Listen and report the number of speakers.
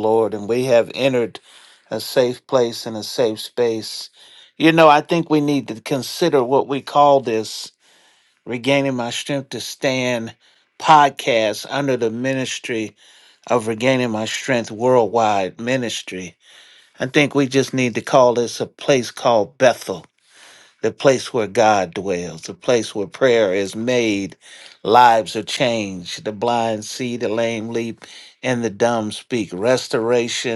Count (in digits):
1